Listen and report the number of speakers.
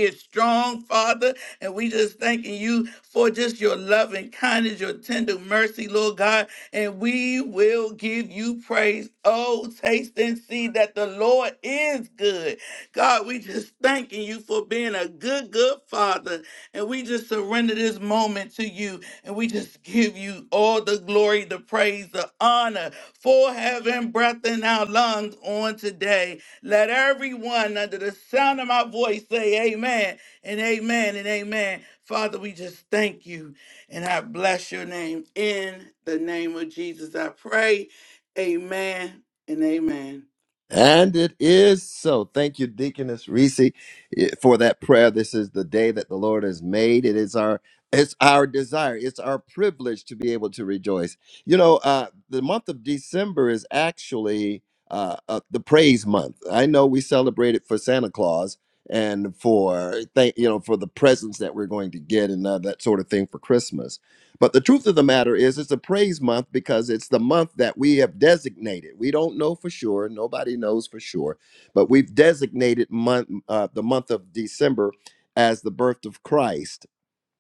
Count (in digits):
2